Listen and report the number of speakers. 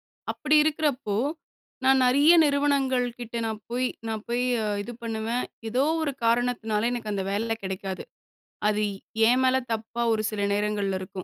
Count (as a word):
one